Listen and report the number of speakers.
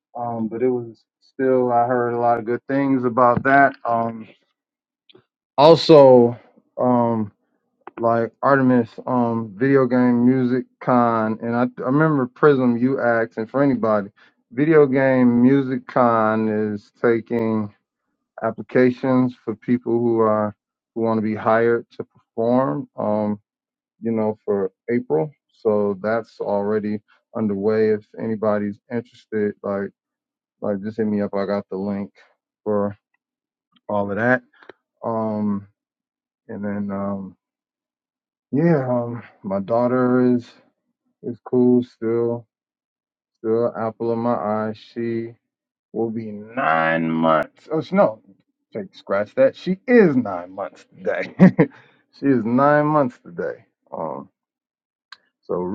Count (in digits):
1